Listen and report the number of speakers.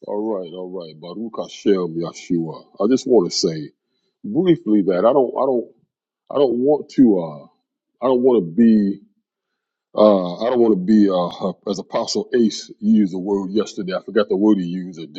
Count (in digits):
1